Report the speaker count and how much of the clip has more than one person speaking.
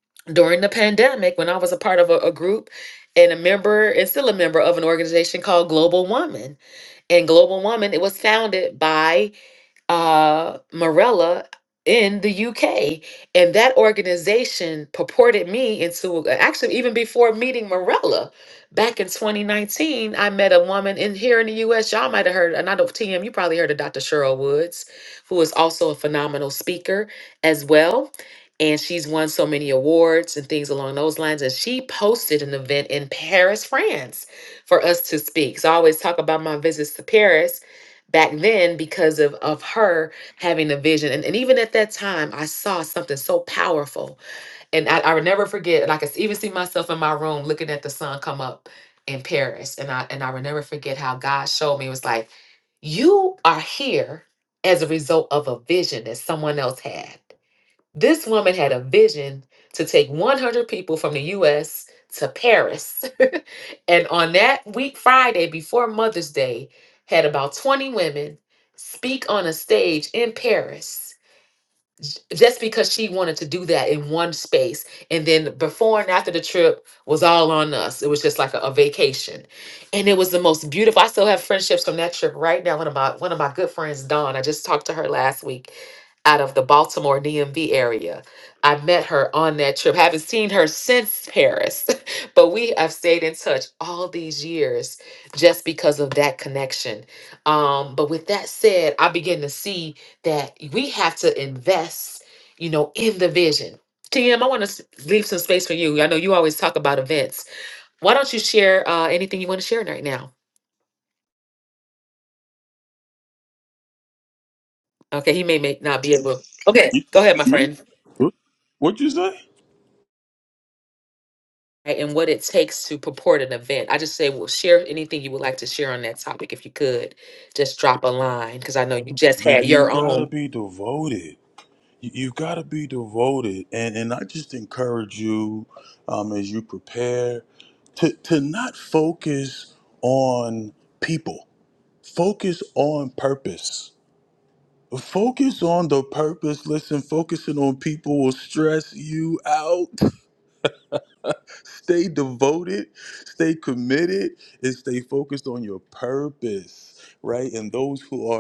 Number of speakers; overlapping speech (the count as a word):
two, about 1%